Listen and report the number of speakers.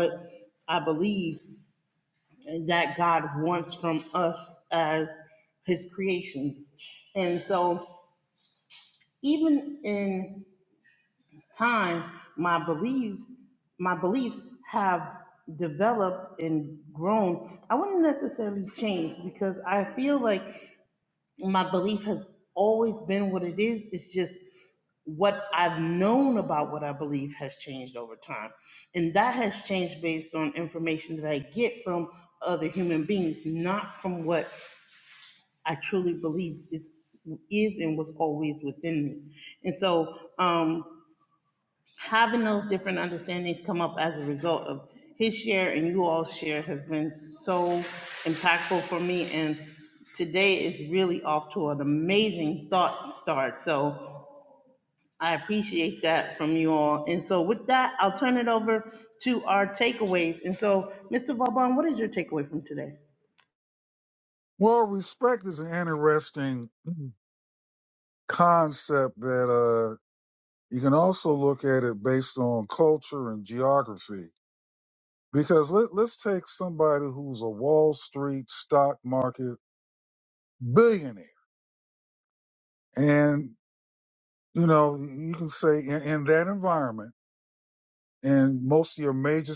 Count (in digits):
2